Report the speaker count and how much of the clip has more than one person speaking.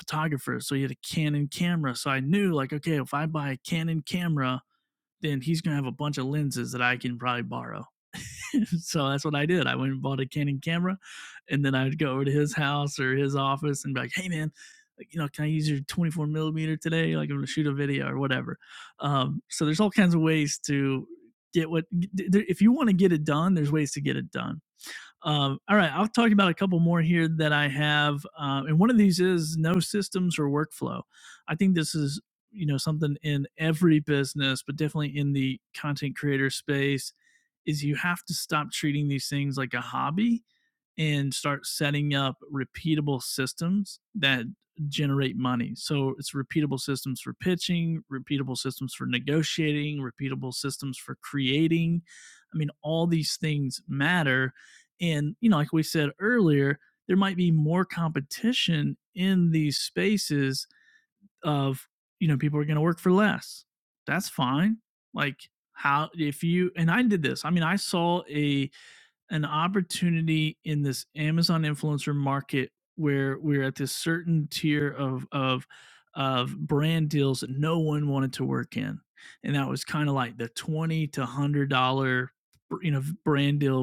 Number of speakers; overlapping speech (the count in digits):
1, no overlap